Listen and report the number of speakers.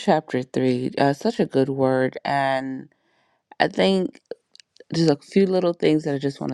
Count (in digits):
1